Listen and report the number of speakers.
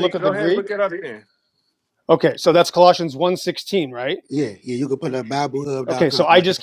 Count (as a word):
three